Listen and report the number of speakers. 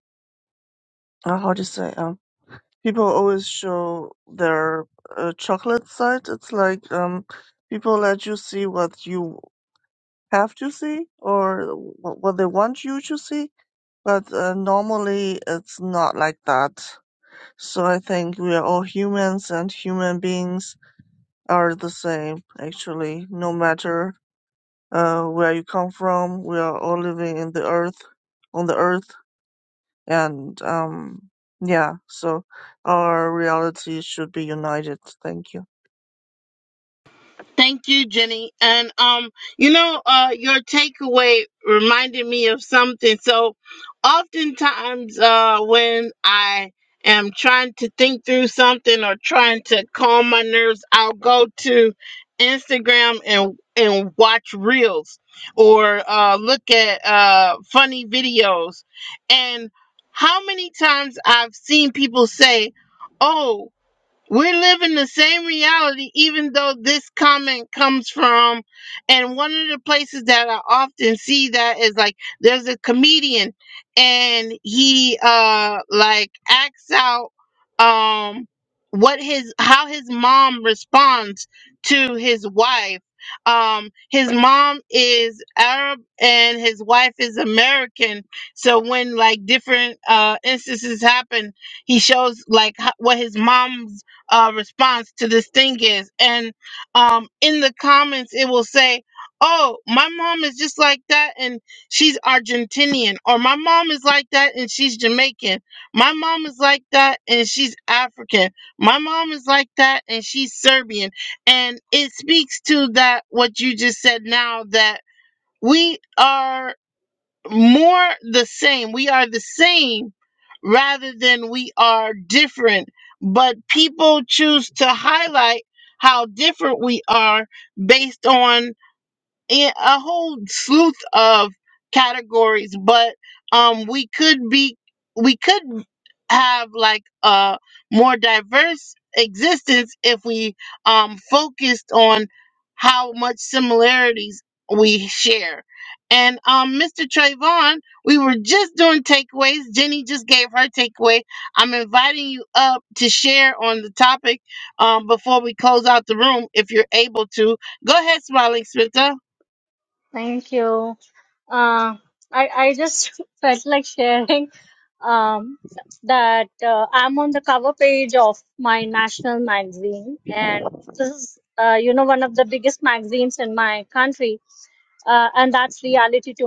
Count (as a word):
three